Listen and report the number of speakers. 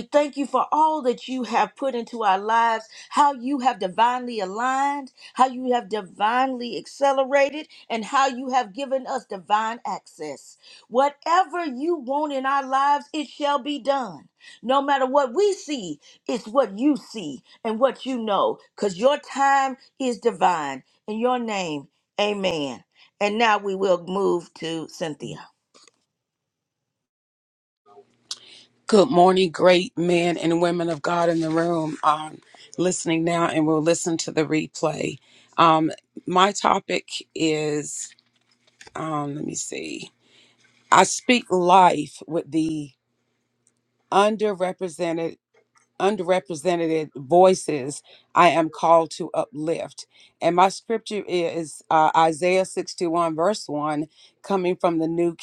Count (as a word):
two